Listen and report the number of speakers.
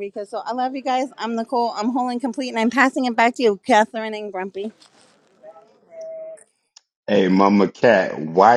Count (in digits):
2